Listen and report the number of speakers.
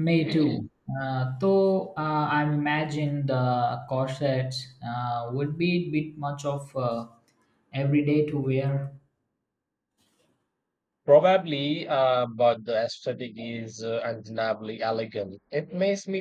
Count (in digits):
2